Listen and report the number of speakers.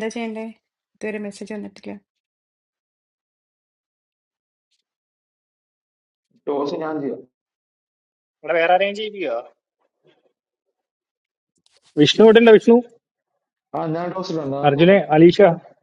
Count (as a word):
three